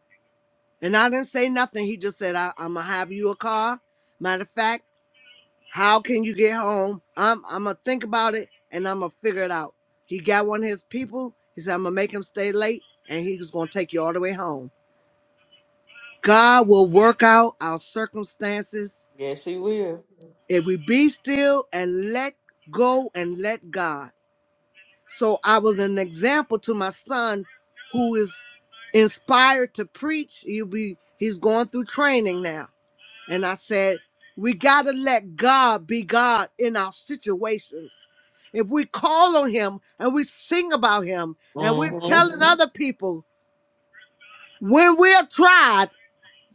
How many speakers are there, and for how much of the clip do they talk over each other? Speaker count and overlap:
2, about 1%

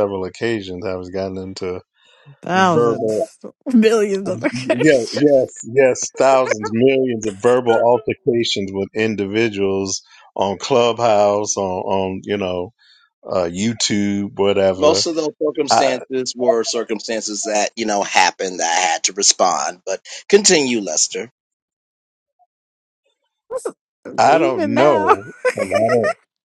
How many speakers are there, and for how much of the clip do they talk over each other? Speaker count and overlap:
3, about 10%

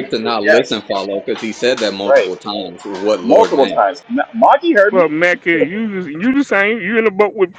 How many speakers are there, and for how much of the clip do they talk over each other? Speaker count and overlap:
3, about 22%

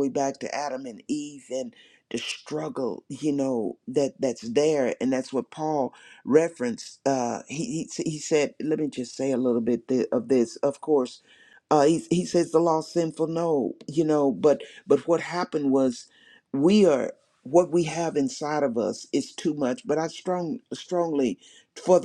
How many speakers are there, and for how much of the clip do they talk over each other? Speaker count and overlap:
1, no overlap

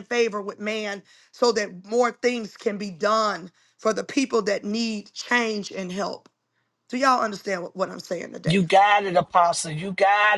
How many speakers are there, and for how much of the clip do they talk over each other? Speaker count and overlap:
2, about 2%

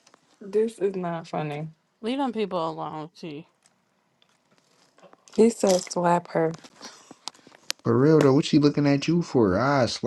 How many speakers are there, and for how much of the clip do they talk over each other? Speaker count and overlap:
3, no overlap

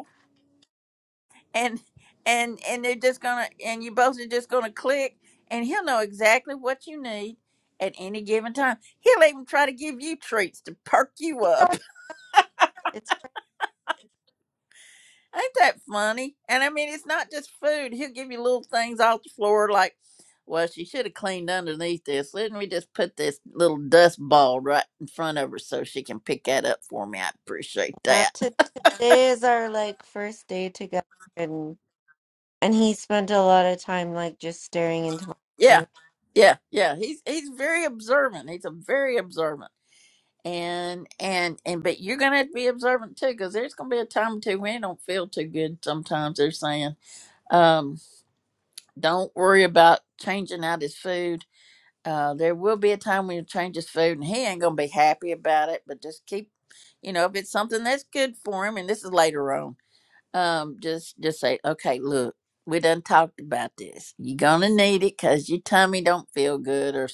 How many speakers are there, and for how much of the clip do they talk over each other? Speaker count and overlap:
2, about 1%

